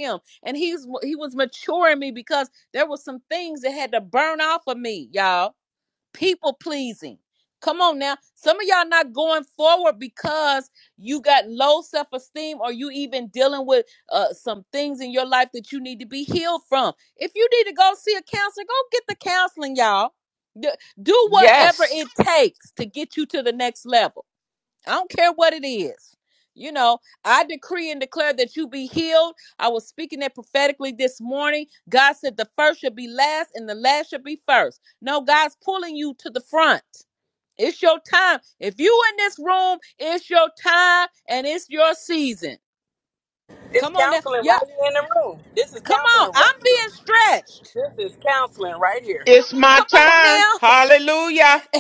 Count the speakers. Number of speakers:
3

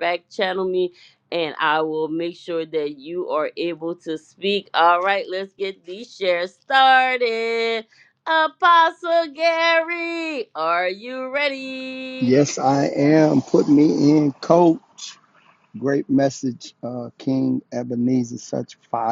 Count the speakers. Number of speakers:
2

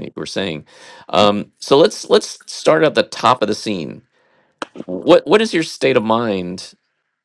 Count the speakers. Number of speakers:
1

